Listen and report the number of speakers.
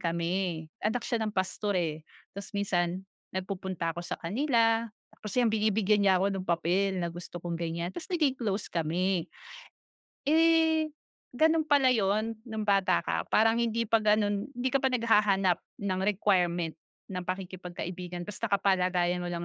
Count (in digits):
1